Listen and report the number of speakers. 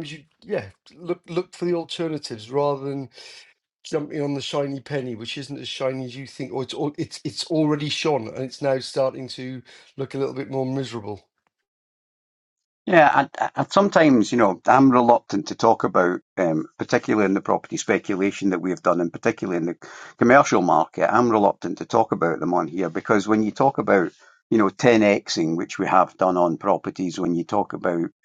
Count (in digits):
2